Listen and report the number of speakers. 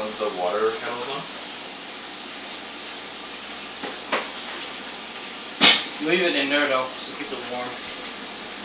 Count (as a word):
two